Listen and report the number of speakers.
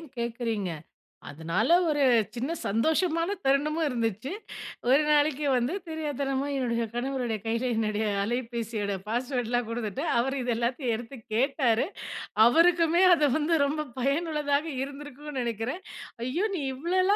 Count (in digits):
1